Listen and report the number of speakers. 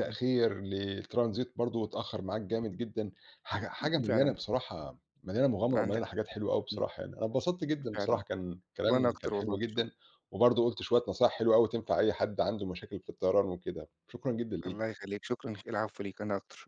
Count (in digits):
2